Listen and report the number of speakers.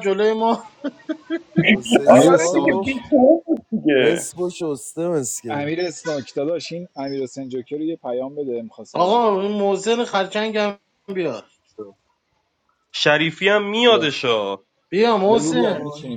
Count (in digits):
5